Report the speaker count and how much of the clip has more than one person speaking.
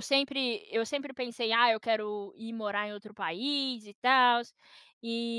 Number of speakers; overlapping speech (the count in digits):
1, no overlap